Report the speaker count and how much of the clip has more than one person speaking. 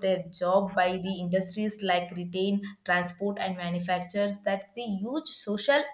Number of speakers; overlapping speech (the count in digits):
1, no overlap